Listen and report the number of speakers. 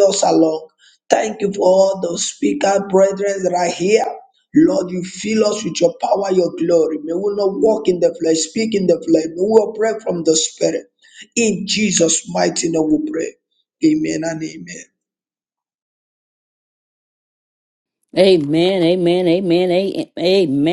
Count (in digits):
2